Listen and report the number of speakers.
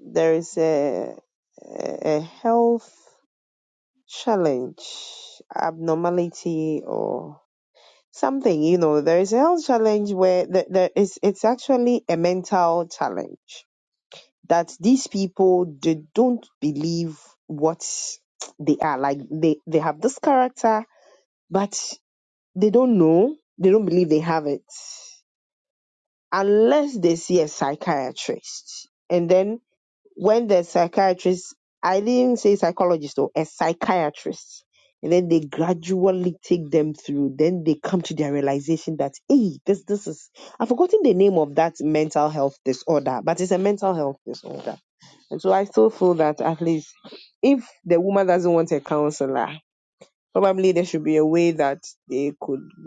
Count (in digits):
1